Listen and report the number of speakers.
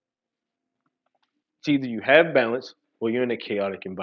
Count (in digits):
1